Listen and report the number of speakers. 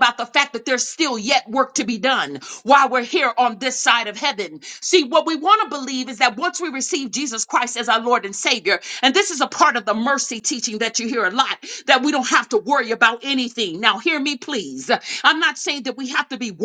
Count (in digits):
1